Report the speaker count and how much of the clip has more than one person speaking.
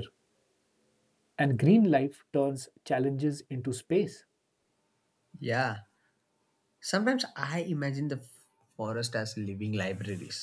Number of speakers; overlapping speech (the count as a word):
two, no overlap